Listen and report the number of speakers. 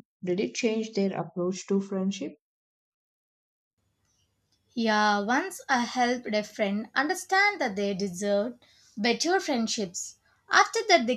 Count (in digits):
2